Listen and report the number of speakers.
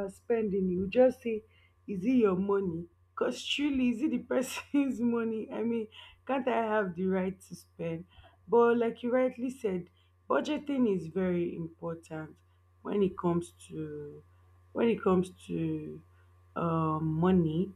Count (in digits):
1